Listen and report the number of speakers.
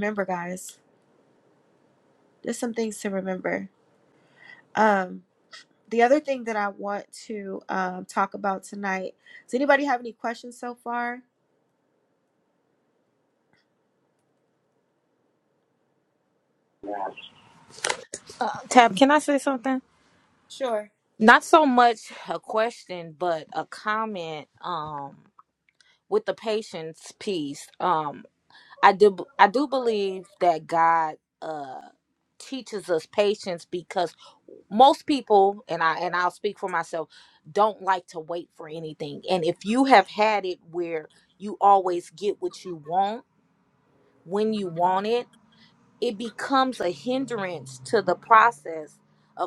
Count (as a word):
two